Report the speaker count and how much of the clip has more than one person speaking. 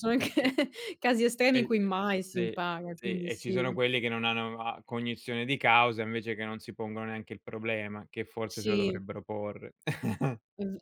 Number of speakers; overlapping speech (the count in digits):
2, about 14%